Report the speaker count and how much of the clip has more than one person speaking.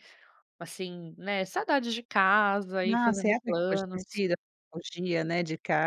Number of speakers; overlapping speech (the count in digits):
2, about 20%